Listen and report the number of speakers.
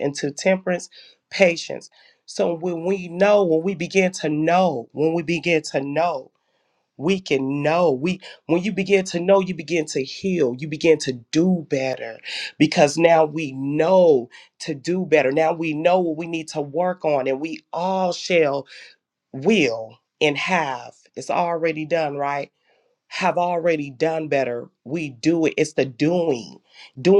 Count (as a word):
one